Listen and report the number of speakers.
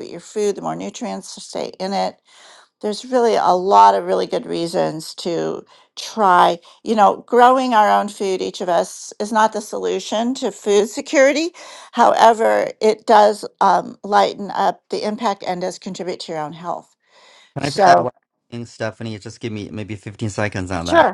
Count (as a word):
two